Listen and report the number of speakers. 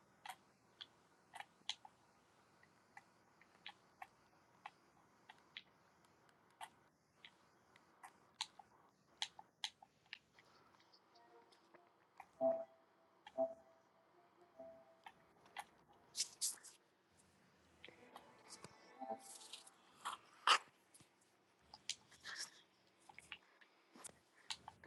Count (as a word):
zero